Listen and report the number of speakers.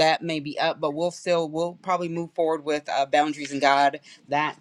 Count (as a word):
one